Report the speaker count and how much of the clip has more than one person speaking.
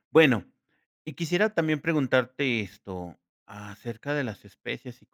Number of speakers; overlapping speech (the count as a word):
one, no overlap